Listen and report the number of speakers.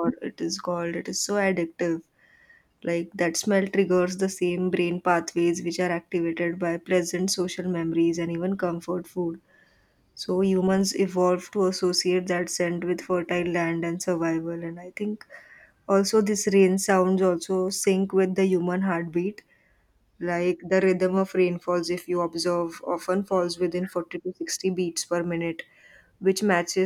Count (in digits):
1